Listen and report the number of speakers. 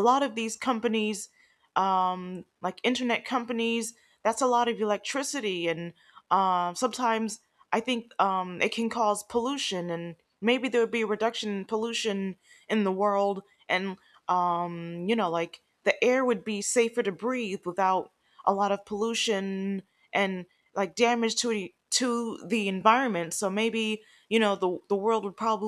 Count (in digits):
1